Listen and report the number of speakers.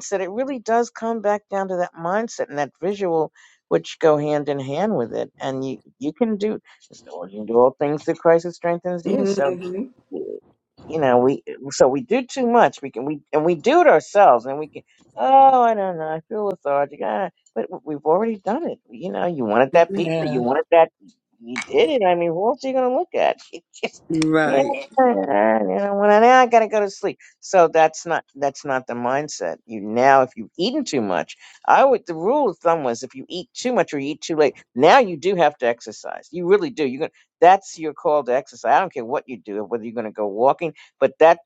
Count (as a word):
two